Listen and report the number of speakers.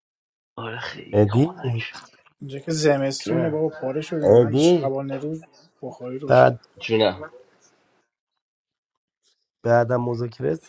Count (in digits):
3